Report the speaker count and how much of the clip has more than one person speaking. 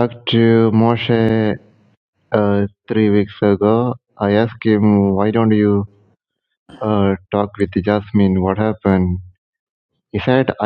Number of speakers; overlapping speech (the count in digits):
1, no overlap